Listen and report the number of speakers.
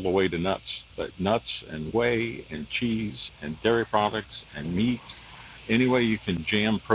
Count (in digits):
1